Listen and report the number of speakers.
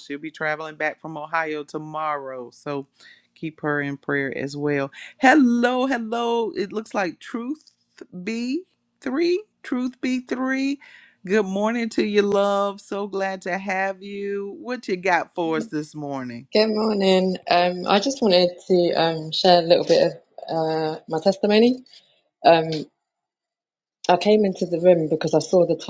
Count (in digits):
2